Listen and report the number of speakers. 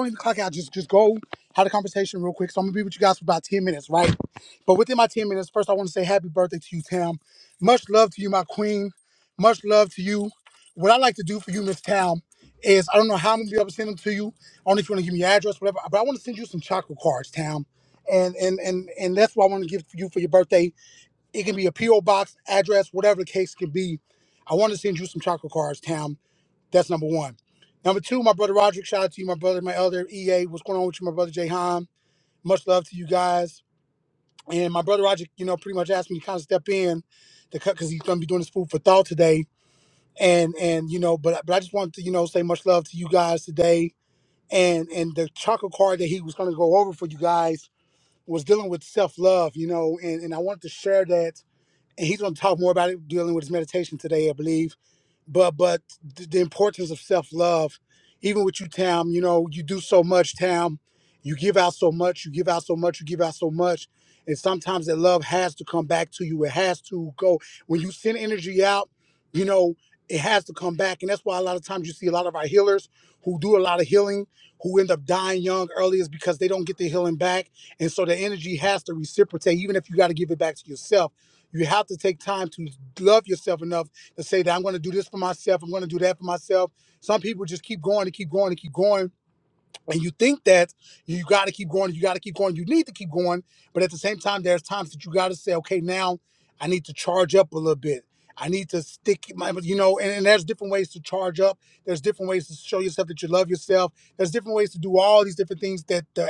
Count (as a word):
one